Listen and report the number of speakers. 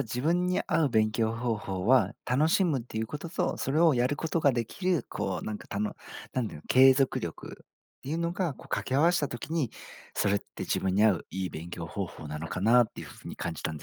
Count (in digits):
1